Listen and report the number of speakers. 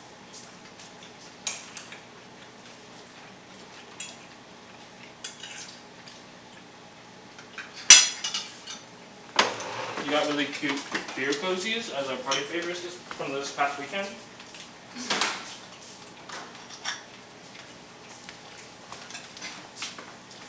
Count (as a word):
one